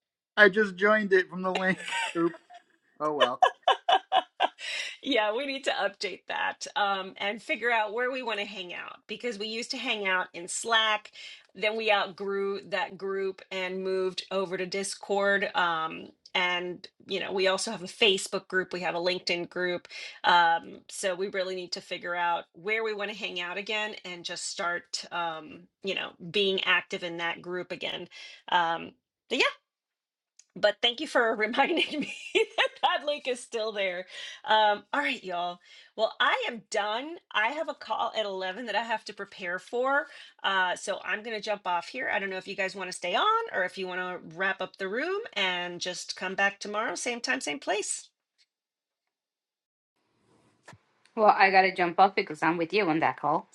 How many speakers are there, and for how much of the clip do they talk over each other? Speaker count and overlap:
three, no overlap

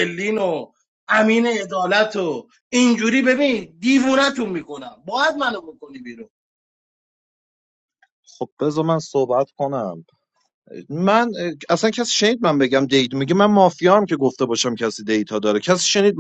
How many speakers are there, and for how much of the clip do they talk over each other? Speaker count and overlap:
two, no overlap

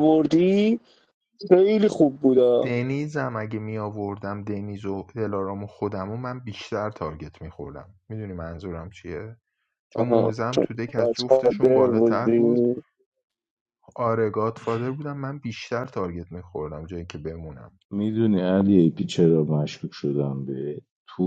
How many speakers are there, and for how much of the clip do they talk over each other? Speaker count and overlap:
three, about 9%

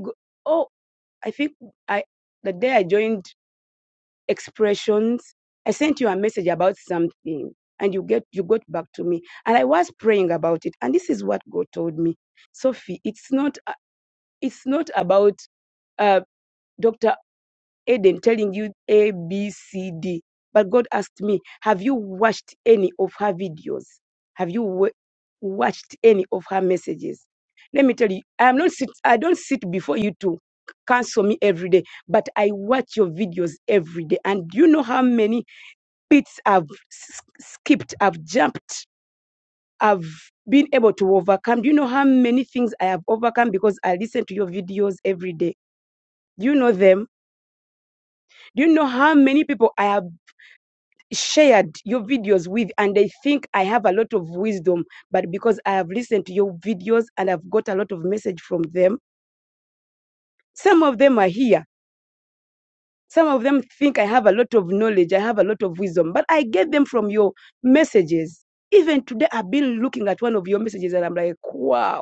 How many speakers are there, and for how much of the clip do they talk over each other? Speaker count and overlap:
one, no overlap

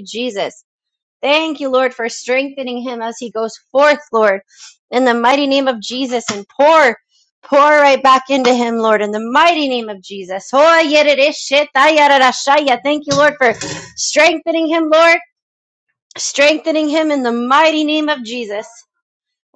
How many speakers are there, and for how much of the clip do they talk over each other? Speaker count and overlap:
one, no overlap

